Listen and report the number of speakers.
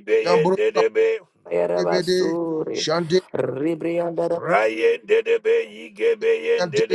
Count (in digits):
3